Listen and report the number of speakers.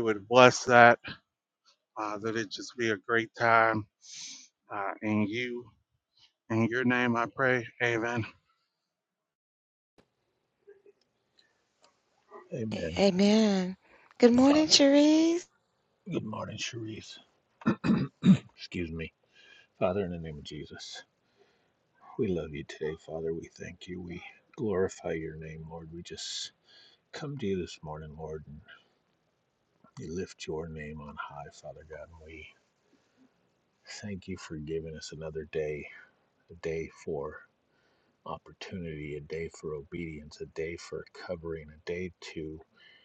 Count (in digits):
3